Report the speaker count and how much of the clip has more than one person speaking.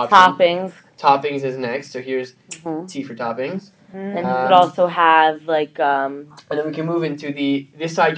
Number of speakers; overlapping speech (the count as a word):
two, about 13%